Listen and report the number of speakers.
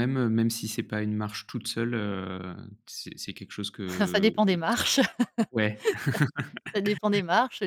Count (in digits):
2